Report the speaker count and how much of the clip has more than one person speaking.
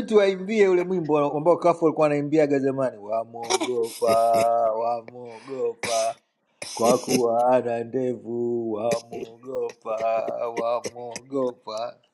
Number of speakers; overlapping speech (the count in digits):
1, no overlap